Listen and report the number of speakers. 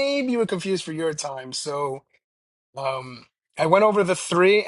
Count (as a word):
one